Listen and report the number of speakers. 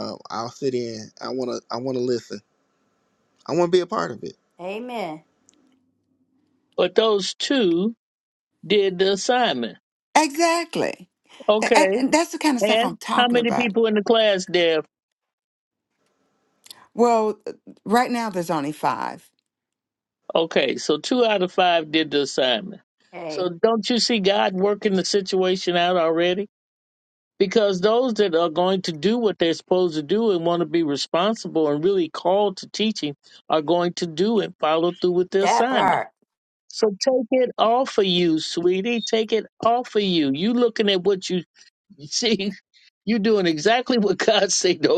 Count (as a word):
four